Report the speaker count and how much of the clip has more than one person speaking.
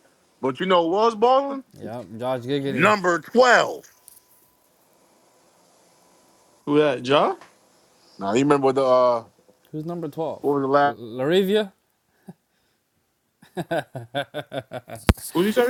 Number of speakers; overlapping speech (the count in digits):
3, about 2%